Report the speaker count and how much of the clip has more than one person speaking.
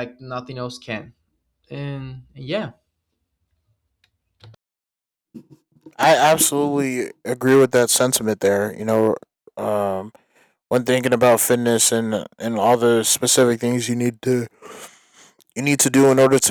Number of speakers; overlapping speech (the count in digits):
2, no overlap